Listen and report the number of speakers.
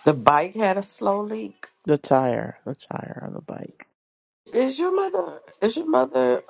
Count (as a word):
two